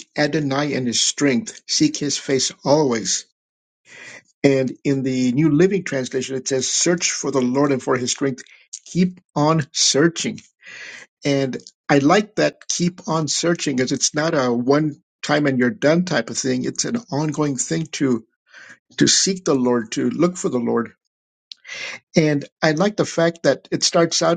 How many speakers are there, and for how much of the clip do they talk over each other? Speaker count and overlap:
1, no overlap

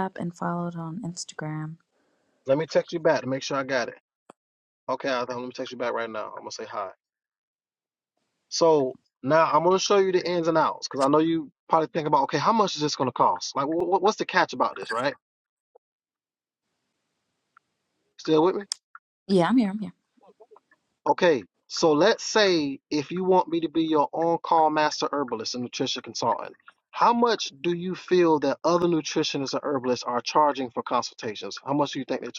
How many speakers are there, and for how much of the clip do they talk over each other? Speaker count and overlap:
2, no overlap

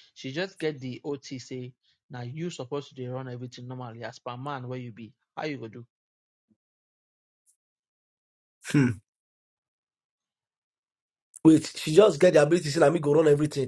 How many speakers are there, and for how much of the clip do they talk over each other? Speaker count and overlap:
2, no overlap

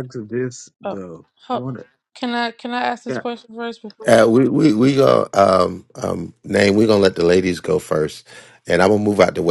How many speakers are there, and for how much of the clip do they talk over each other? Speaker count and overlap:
3, about 8%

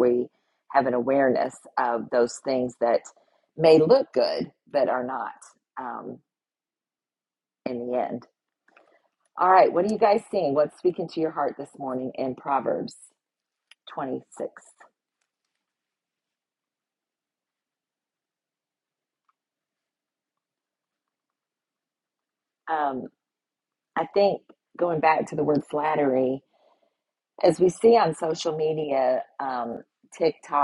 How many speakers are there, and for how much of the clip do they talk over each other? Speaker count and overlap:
1, no overlap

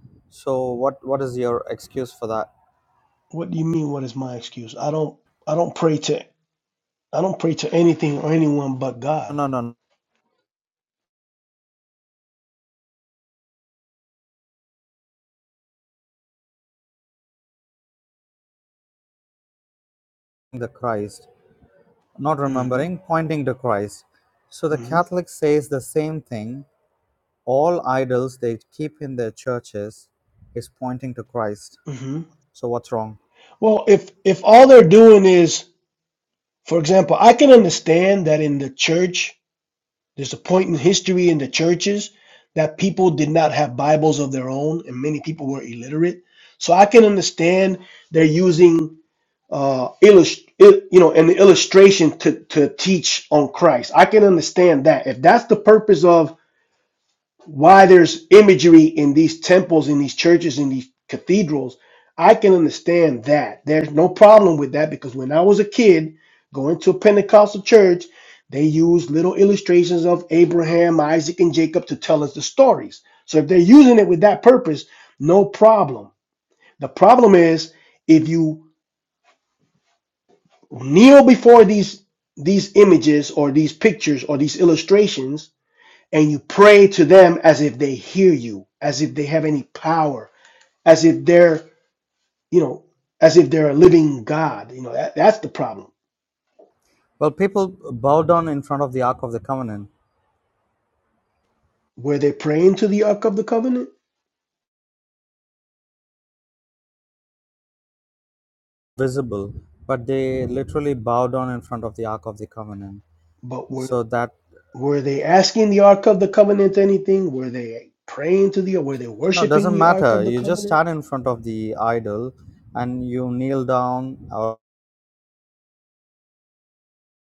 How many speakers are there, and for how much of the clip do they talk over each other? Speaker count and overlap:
2, about 2%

